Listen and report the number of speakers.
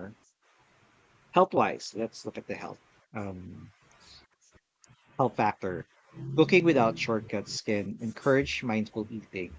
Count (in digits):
1